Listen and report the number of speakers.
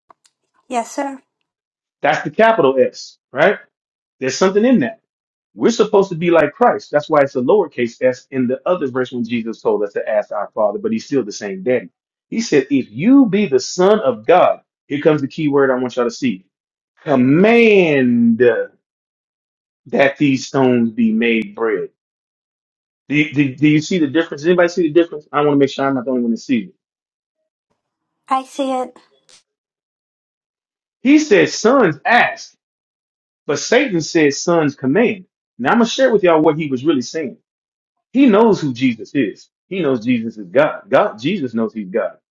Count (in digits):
2